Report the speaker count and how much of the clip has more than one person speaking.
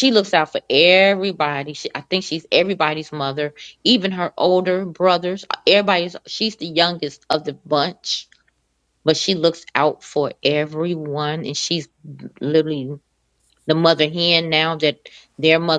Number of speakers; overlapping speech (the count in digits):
1, no overlap